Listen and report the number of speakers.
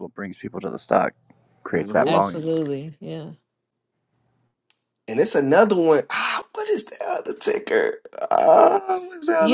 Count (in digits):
3